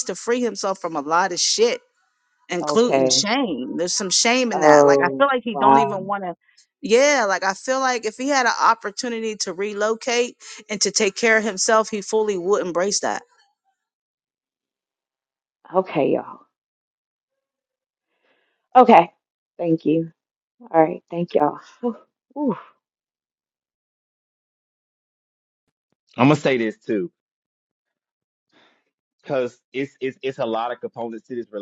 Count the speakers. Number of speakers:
3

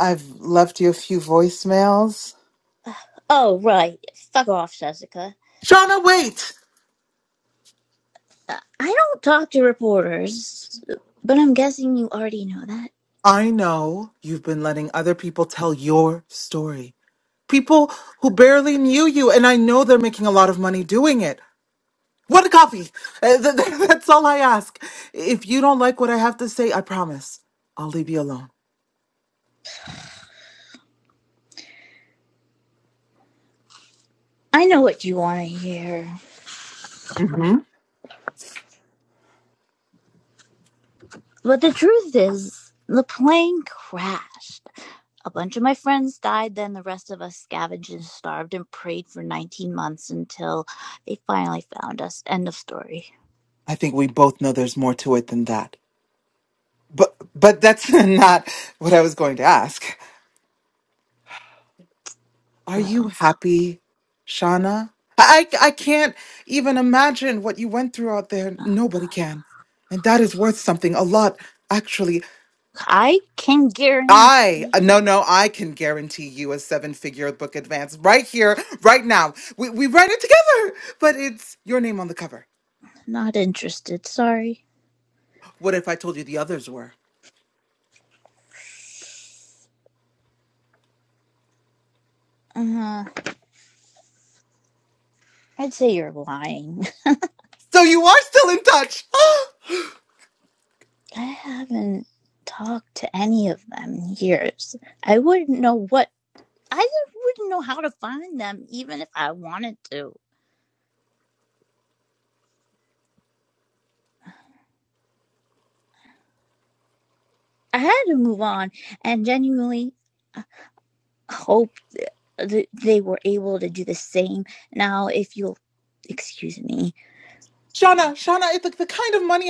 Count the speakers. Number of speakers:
2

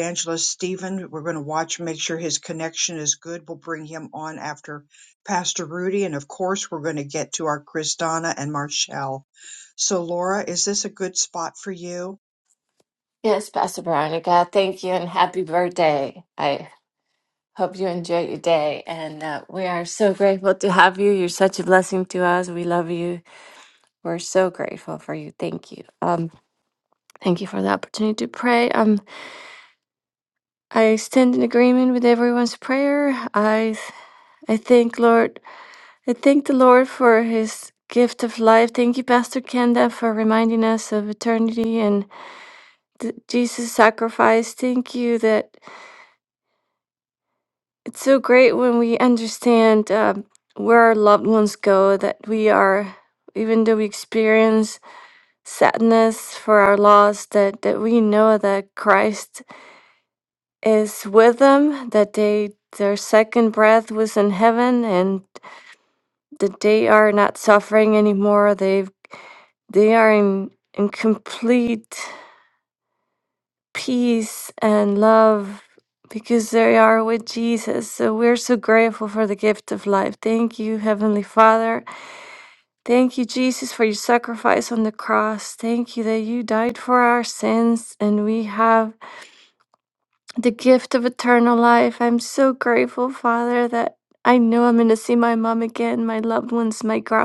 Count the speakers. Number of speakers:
2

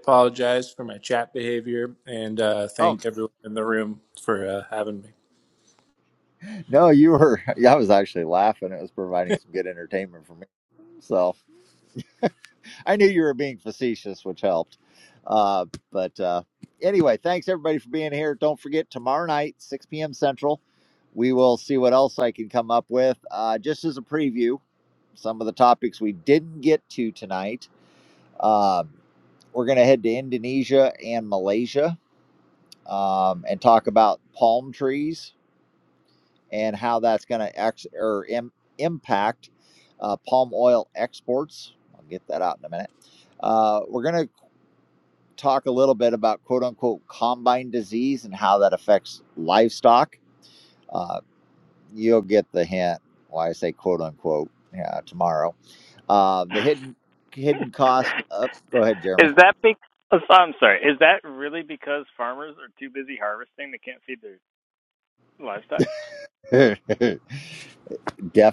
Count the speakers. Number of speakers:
3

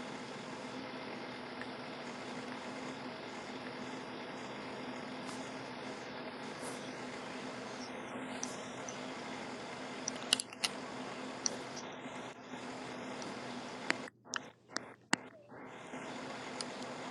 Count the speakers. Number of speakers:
0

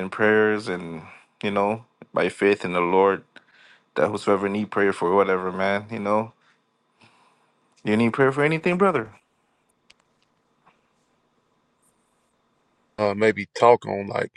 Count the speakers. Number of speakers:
2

